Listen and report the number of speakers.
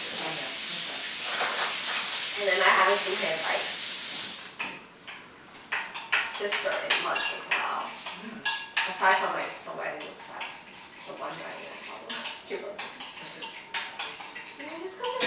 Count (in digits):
2